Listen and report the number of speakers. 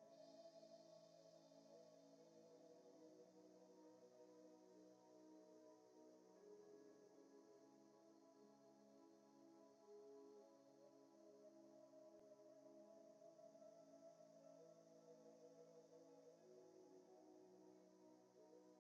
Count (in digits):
0